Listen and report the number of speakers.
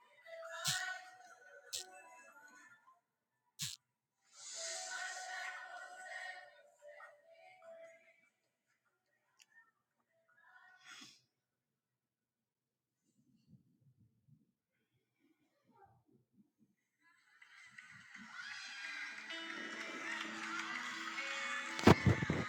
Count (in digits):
0